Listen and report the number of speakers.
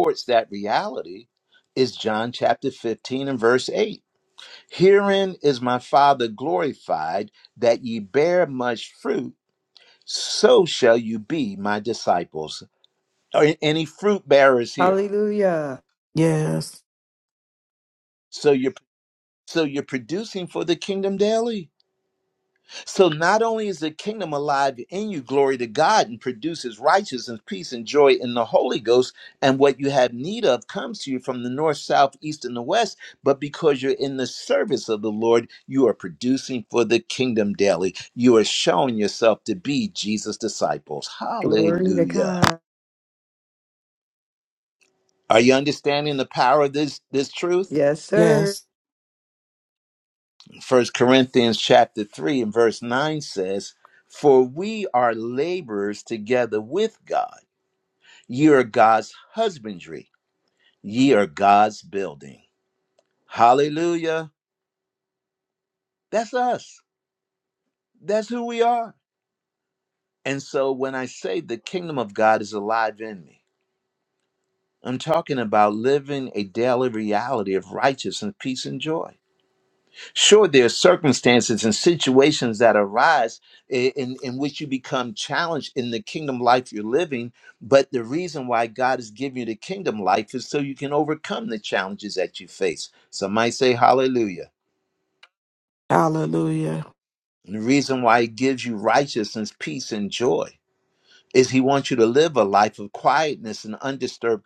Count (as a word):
three